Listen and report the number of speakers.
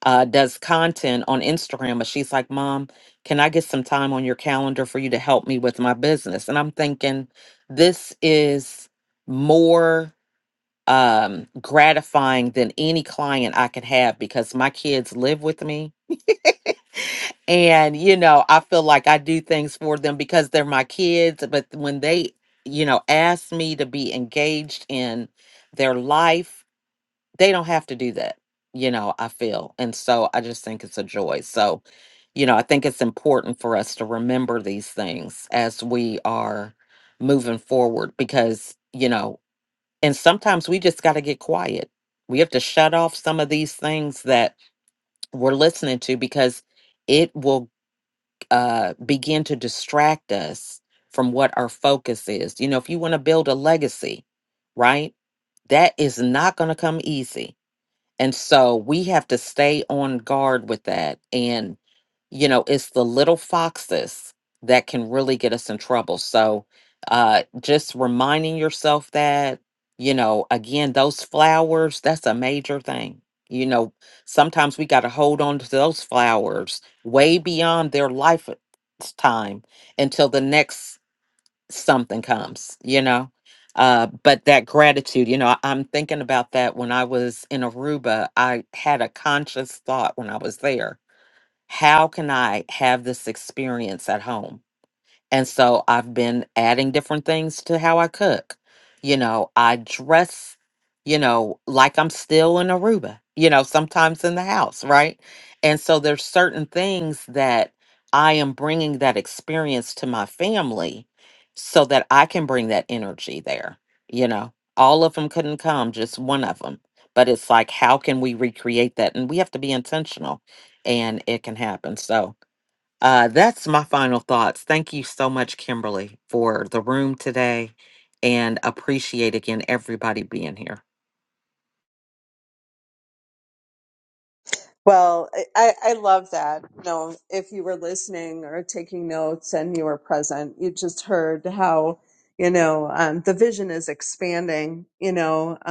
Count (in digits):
2